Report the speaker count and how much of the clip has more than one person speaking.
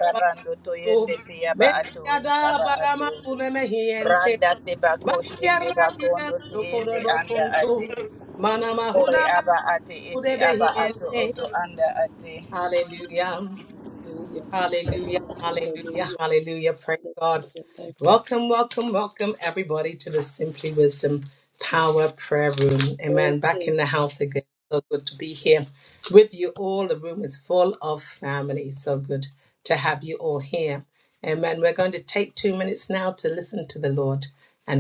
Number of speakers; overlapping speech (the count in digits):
3, about 18%